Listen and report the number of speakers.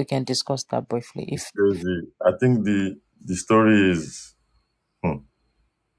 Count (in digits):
2